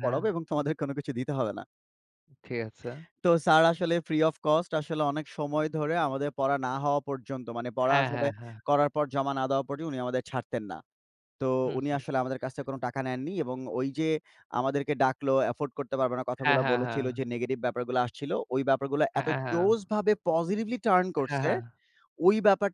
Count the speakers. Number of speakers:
2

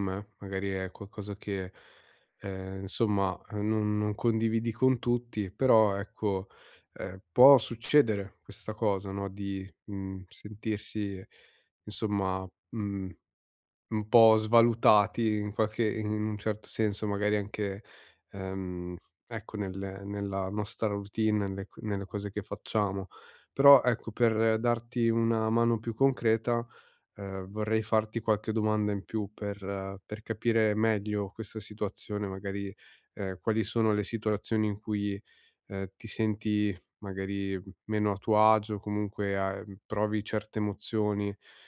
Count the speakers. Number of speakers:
1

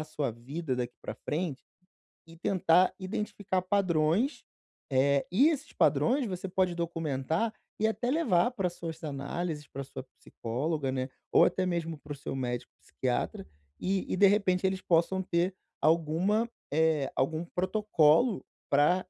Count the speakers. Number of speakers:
1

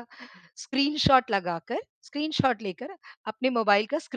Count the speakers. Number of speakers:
1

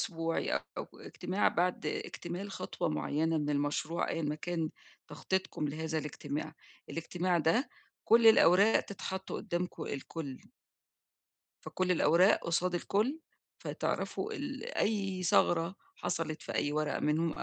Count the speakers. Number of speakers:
1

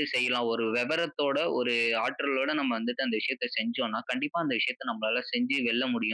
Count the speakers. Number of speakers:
1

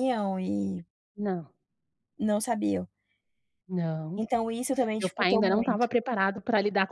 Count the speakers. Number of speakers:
2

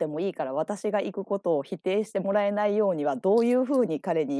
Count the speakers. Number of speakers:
1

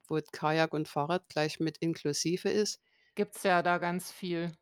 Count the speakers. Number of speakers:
2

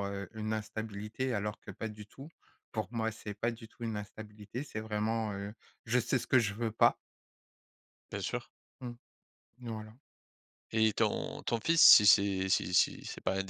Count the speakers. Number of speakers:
2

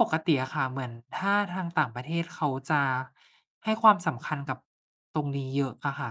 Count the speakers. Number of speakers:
1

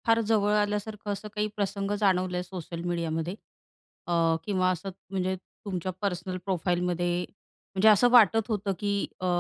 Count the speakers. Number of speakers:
1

